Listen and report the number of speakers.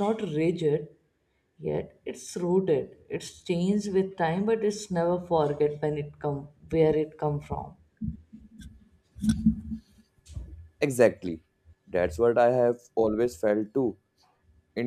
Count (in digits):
2